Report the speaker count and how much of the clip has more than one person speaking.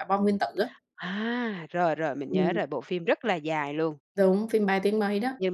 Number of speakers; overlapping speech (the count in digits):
2, about 6%